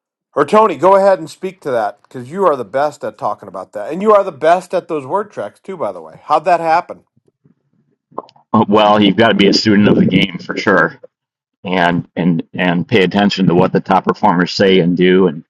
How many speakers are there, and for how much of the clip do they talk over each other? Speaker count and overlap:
2, no overlap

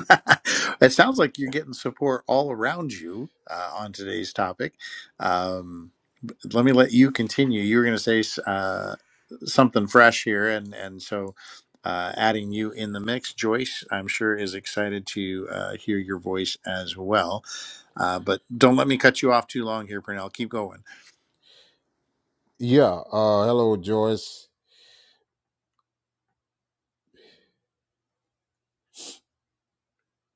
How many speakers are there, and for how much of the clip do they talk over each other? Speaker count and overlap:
2, no overlap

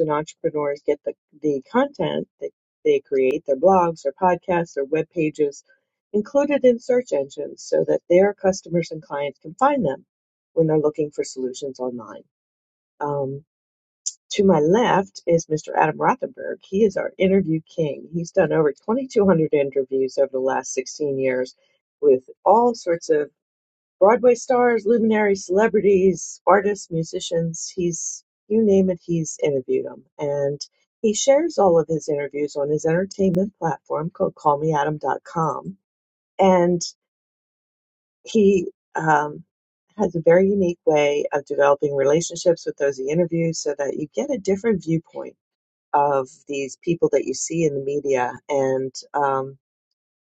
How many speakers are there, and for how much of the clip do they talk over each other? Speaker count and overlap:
1, no overlap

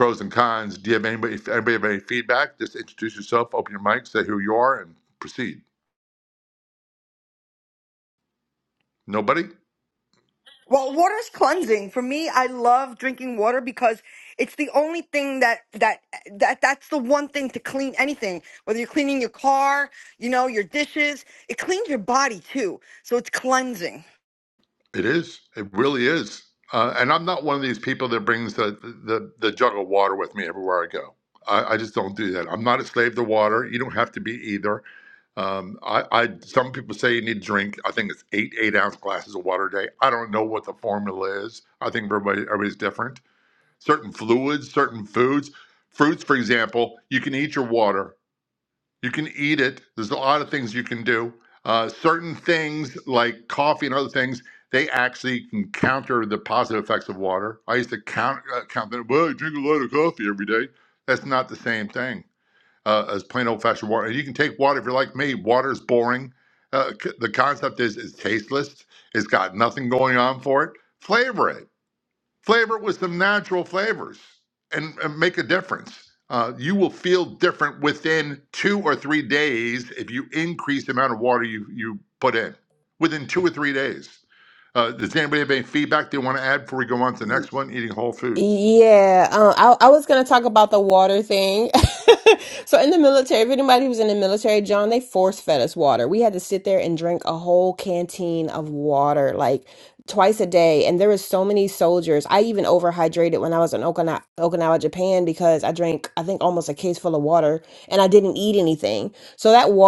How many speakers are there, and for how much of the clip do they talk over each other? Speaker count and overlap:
3, under 1%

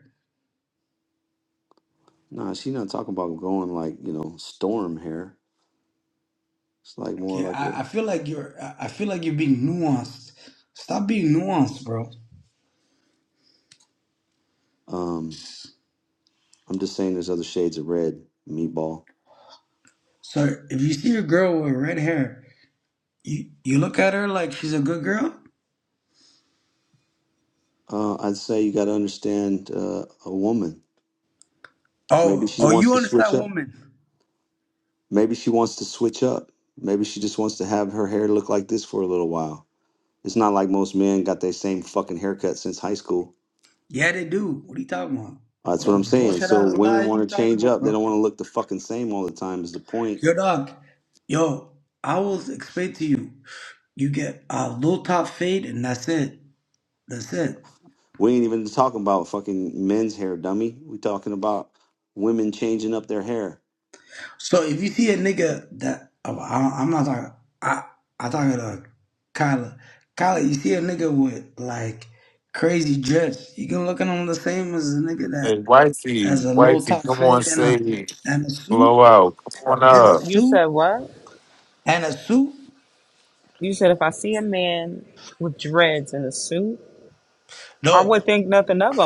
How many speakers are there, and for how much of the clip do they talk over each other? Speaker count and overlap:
4, about 8%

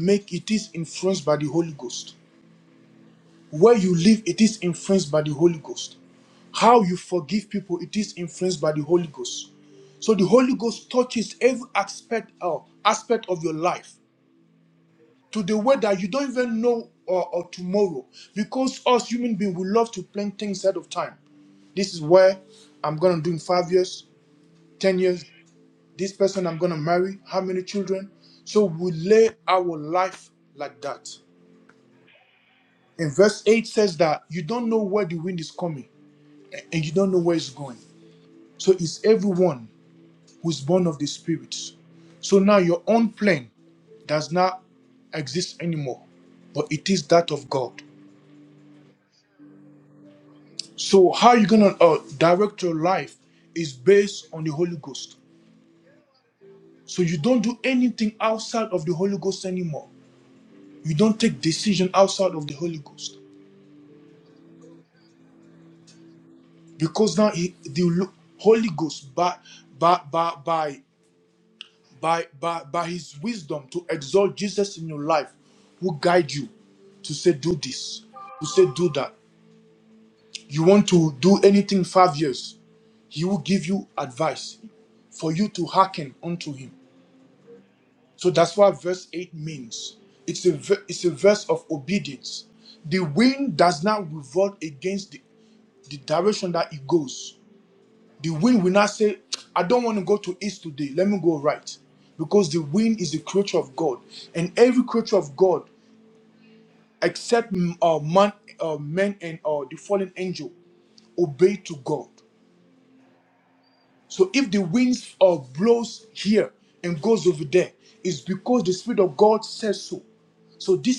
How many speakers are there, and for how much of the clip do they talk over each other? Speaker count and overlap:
1, no overlap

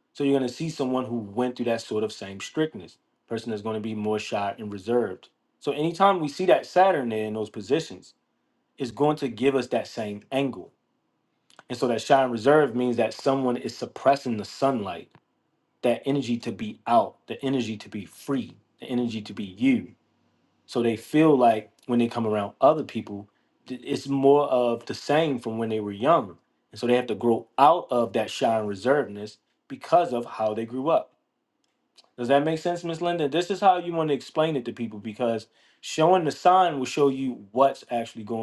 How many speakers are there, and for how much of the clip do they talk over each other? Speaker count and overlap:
1, no overlap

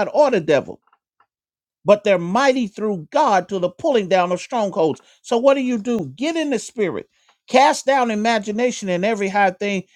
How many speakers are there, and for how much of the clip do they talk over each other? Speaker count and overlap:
1, no overlap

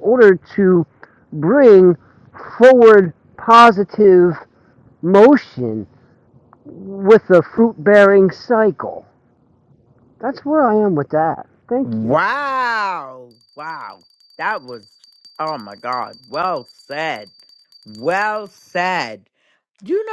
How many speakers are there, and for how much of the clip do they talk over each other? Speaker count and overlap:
2, about 2%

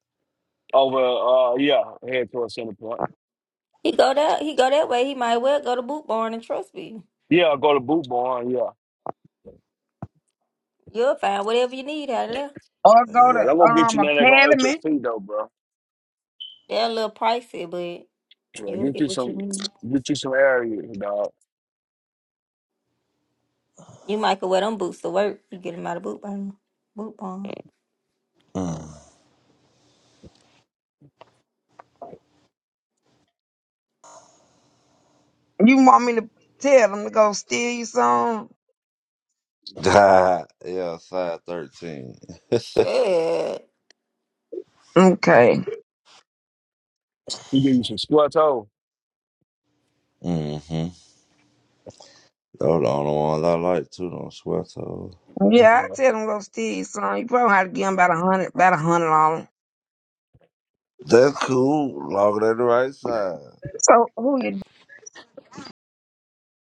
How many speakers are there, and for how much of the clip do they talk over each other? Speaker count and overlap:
4, about 4%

